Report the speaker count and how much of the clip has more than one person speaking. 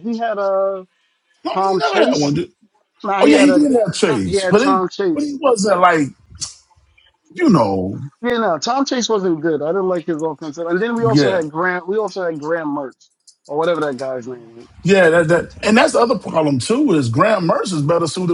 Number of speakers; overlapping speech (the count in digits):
2, about 12%